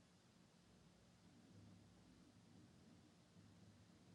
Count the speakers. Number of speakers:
0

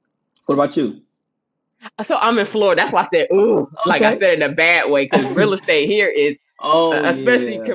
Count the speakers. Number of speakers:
2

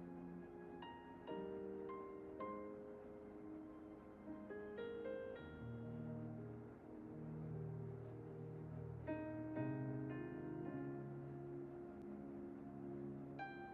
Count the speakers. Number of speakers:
0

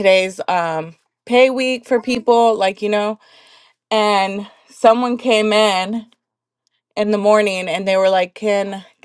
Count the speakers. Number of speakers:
1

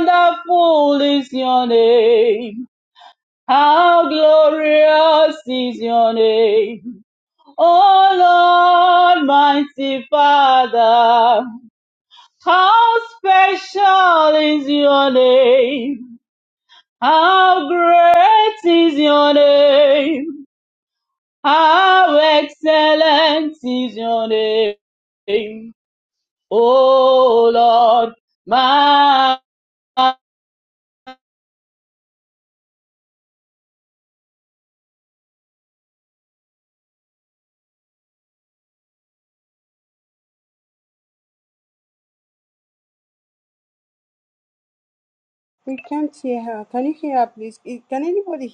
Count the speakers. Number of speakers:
2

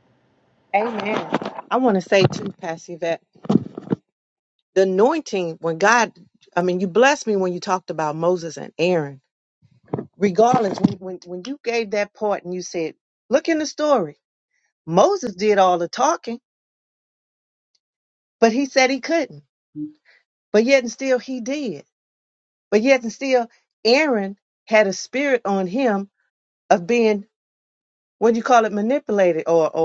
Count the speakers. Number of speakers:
1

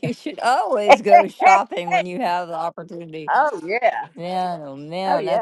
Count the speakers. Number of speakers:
2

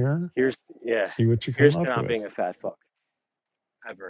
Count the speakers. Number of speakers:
2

